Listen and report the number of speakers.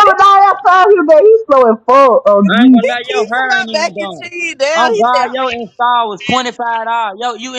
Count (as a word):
three